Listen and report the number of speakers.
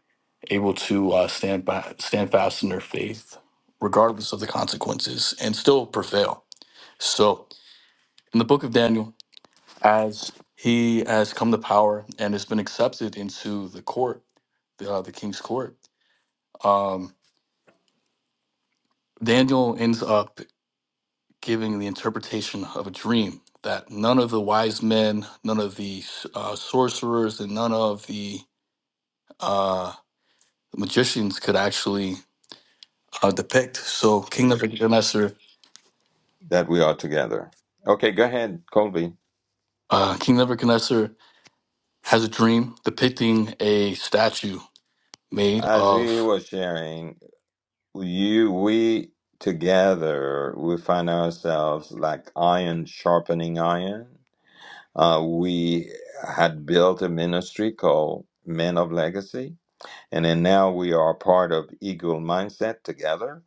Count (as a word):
two